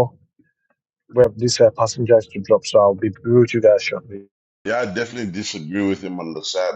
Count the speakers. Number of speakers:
2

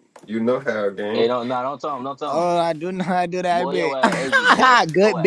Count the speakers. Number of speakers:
3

